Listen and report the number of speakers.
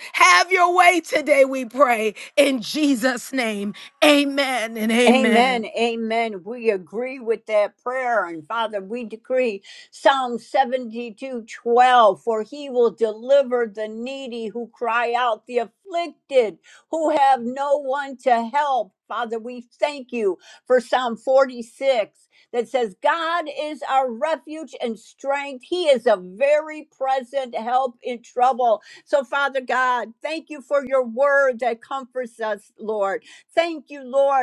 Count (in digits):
2